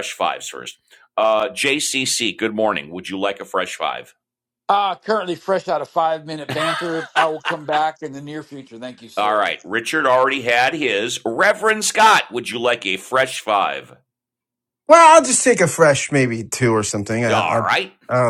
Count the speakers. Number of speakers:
three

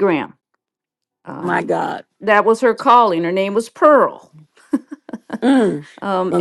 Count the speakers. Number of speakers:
two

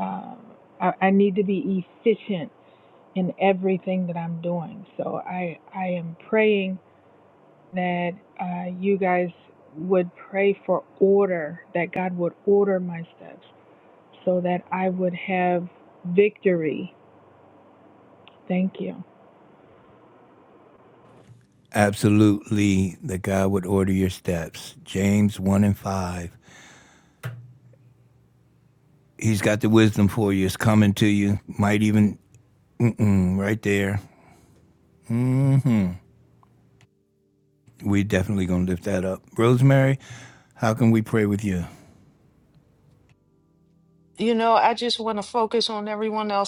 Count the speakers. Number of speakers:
three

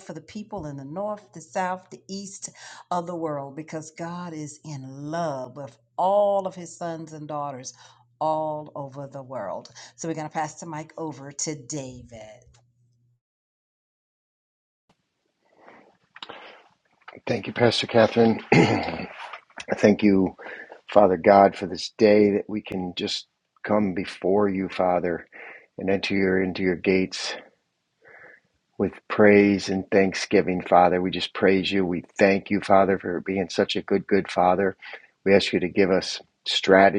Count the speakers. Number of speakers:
two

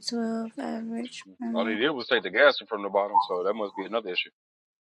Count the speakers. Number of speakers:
two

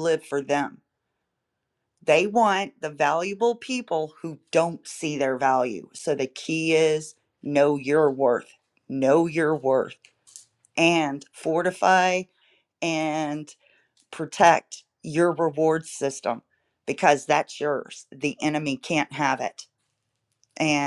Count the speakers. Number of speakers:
one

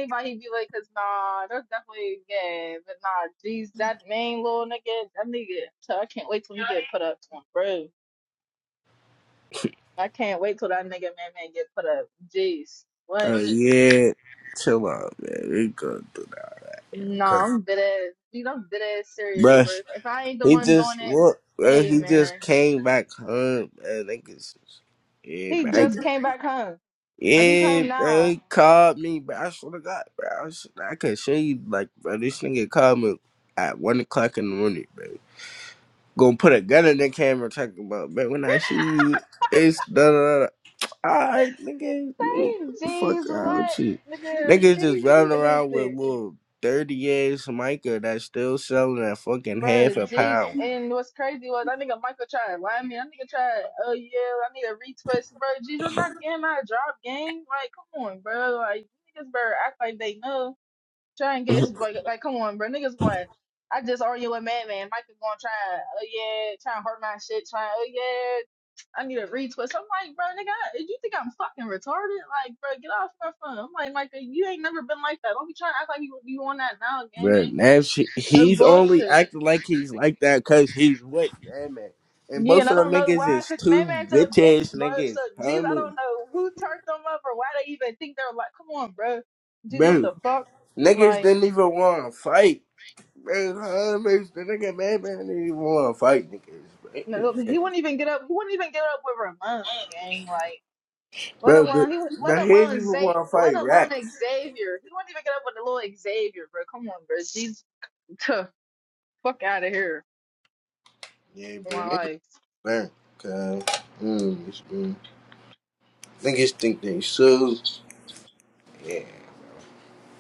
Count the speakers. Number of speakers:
two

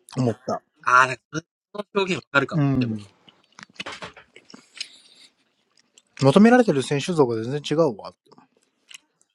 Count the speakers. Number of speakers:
two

